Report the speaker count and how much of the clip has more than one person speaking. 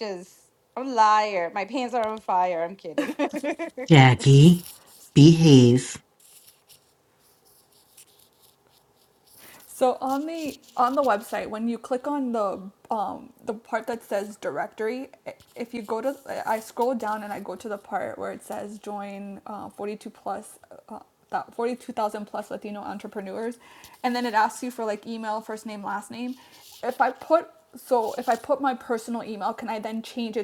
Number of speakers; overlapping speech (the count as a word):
three, no overlap